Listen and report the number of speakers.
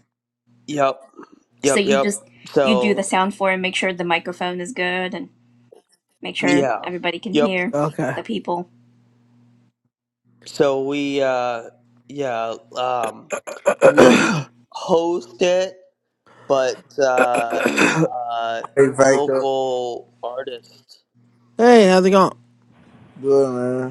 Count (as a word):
four